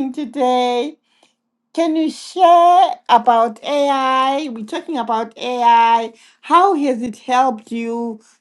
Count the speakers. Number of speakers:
1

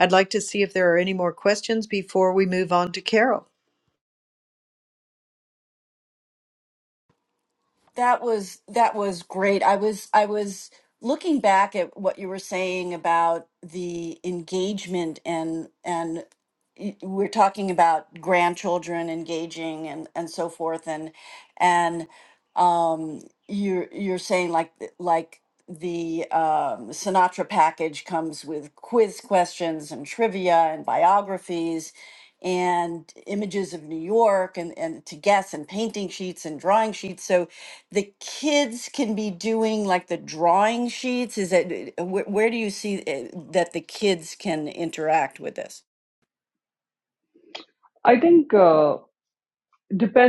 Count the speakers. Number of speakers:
3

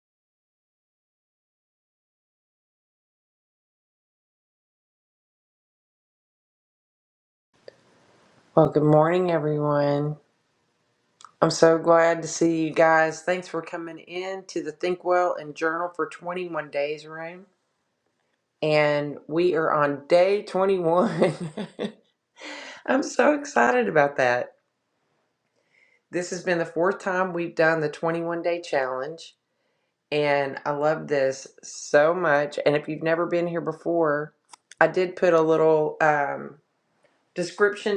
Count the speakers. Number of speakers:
1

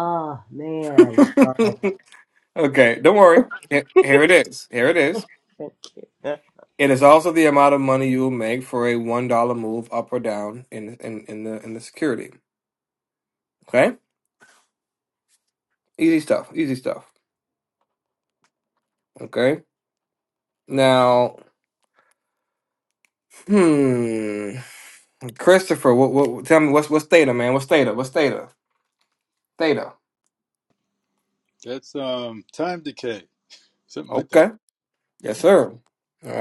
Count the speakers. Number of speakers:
3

